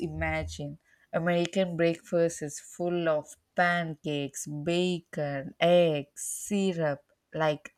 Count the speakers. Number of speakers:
1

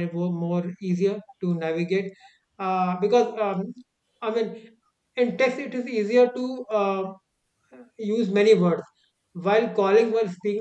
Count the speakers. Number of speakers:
1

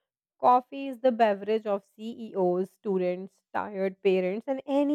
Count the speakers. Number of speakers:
1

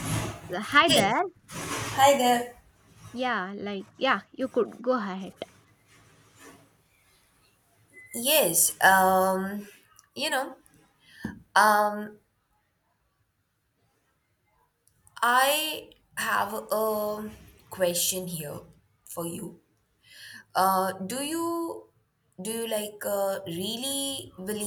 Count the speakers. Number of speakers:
2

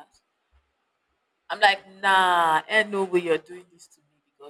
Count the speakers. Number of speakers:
1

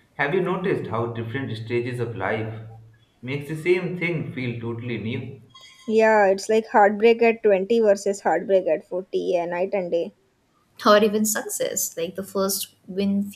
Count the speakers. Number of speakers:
3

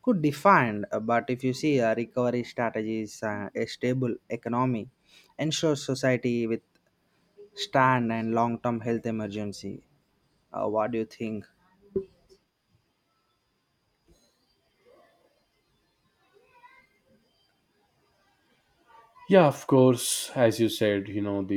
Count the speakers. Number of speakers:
2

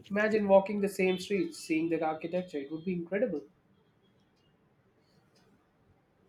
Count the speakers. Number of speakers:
1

